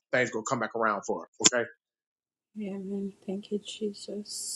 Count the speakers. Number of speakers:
2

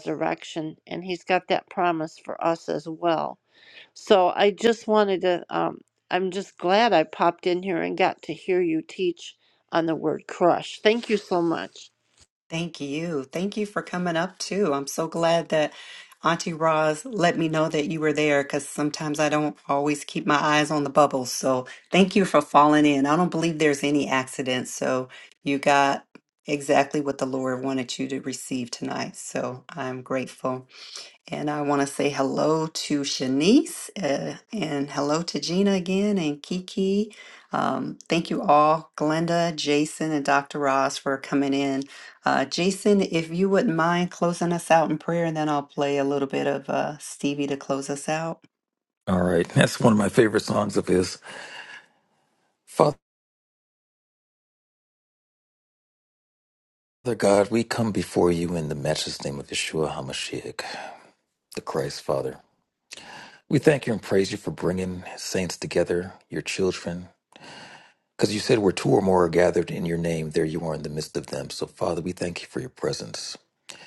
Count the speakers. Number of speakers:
3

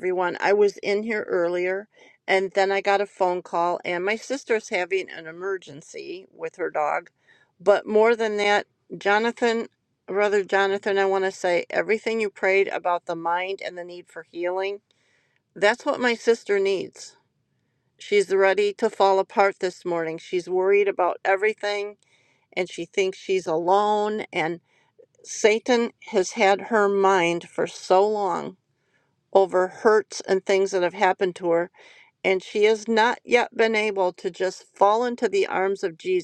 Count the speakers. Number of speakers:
1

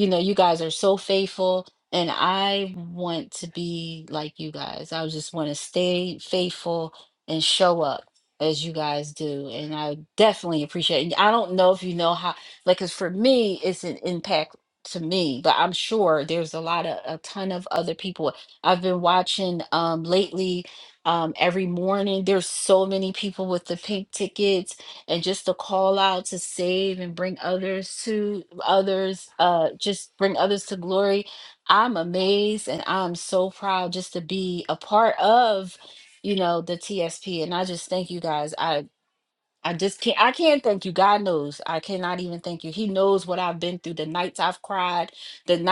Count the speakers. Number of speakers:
1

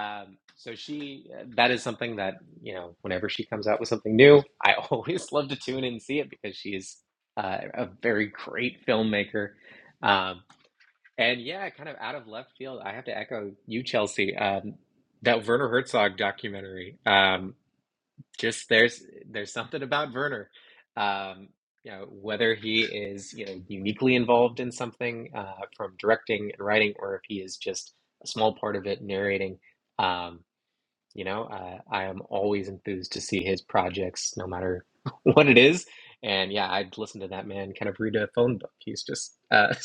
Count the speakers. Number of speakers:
1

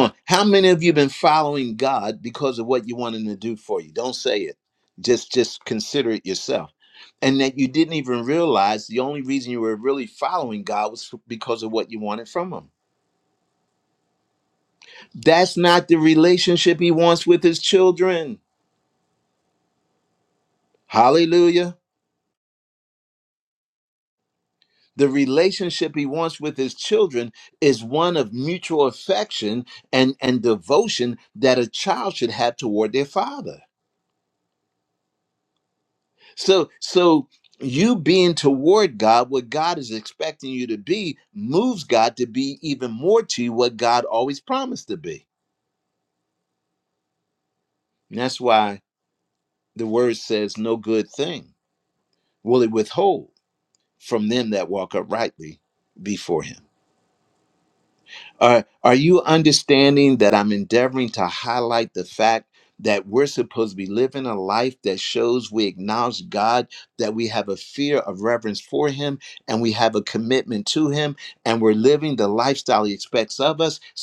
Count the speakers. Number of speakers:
1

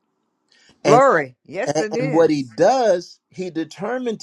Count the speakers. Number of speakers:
2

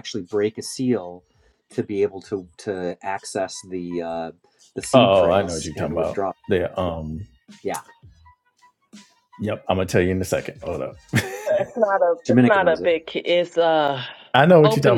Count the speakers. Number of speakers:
3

